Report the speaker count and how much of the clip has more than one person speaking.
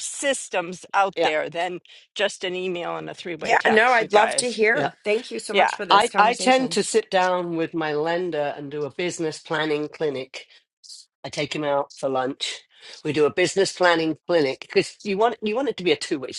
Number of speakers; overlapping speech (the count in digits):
3, about 15%